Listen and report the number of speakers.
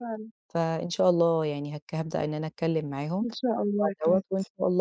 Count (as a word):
two